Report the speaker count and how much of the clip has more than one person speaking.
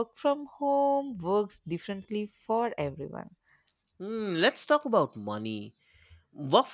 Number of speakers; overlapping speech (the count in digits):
2, no overlap